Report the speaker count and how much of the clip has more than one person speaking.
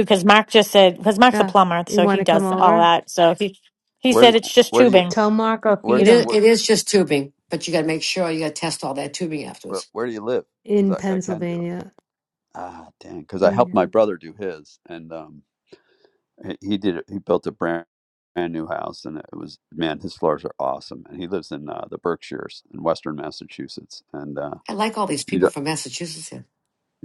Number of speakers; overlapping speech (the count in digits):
4, about 15%